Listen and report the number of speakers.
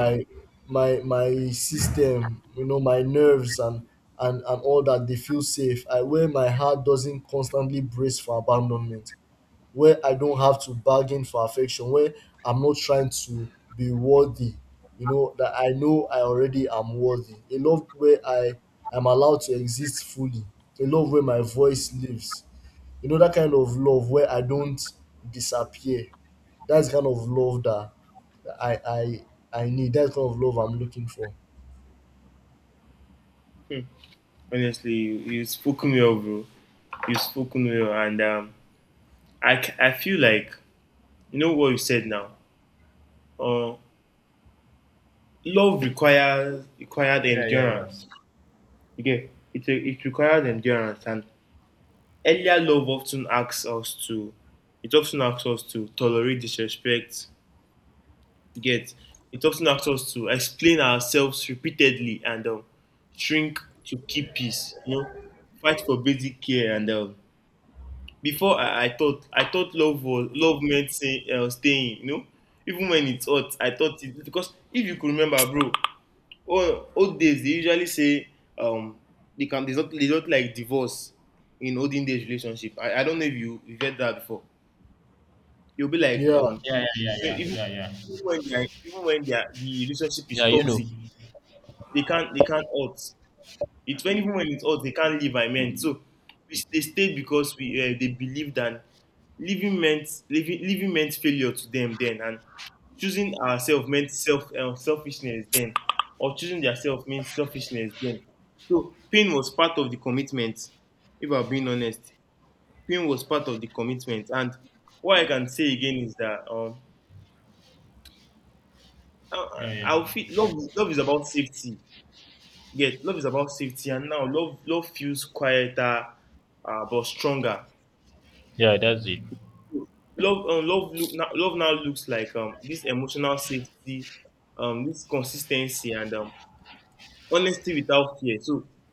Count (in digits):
3